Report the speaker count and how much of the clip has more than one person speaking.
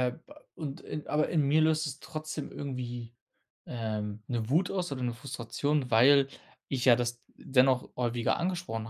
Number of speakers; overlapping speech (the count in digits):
1, no overlap